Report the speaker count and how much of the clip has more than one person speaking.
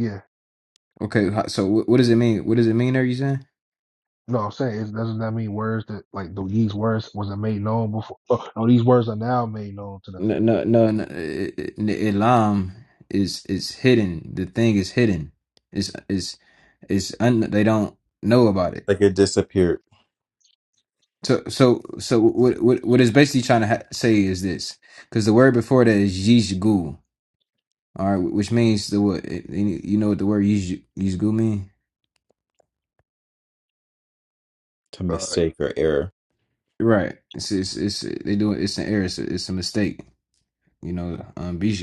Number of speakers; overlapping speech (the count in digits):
3, about 1%